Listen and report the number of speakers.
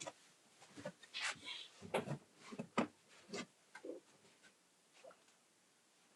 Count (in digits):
0